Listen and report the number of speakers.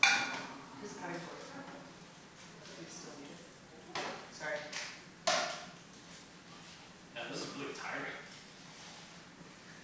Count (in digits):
2